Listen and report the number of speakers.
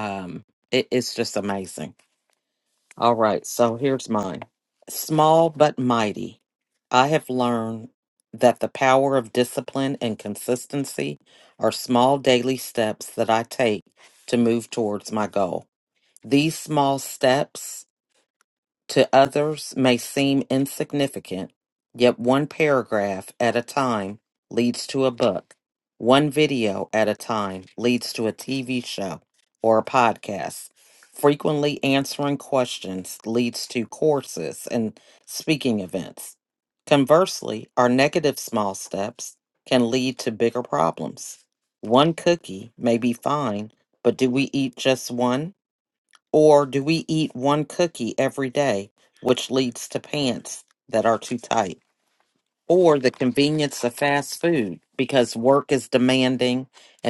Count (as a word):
one